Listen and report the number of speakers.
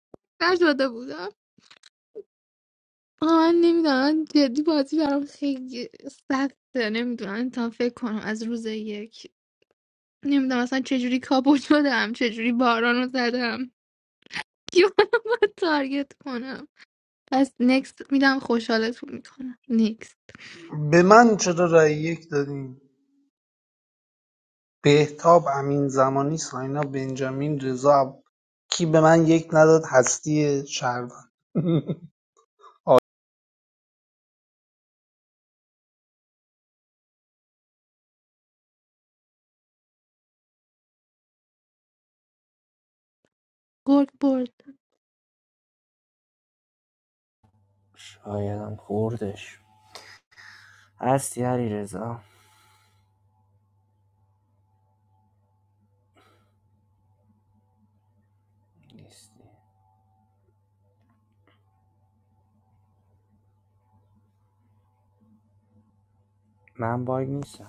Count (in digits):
3